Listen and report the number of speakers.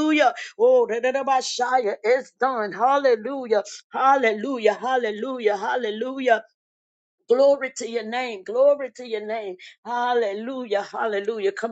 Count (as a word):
one